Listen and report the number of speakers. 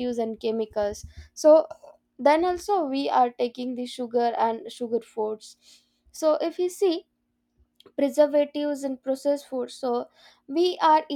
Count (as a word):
one